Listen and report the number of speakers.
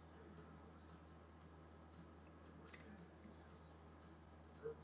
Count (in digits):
0